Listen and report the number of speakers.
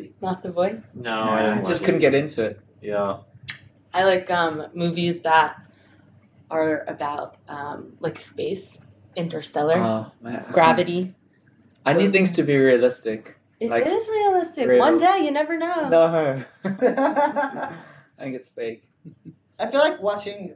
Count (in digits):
4